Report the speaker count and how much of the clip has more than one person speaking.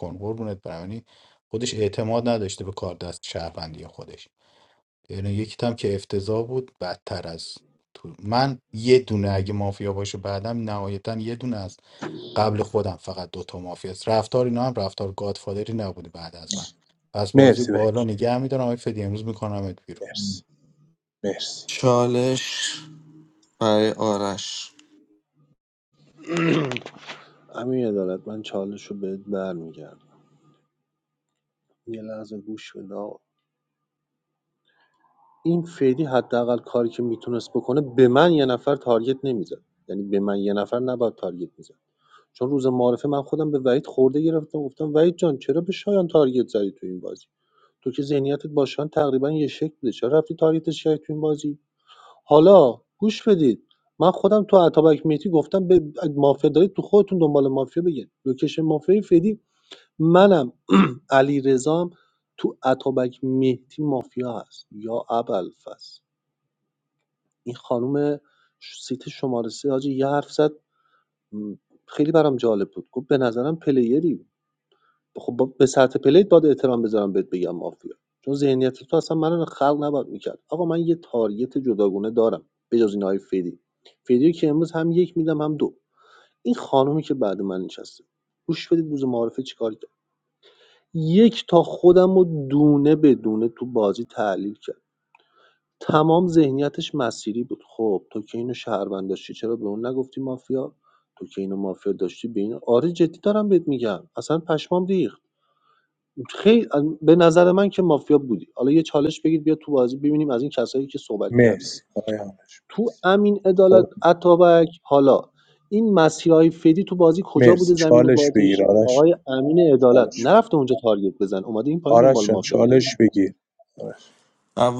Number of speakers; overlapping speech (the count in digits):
4, about 3%